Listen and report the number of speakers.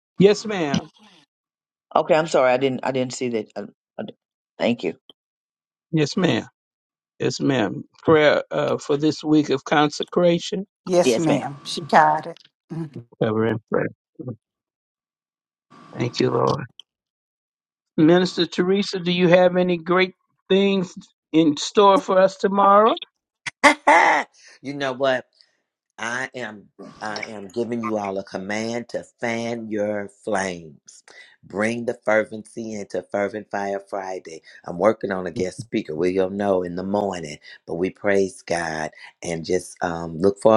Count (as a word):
four